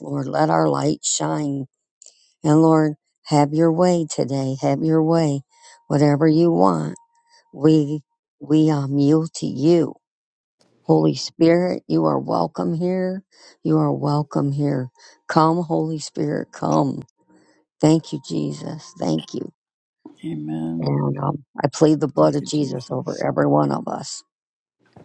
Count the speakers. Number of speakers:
2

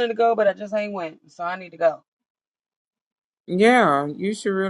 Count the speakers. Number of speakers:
2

